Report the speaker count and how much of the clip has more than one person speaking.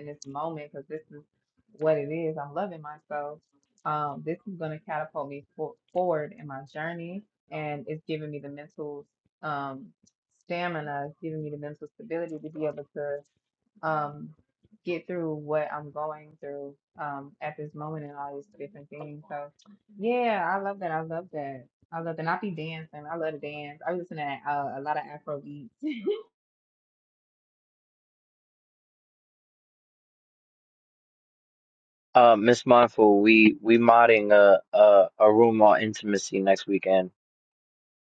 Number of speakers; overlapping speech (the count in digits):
2, no overlap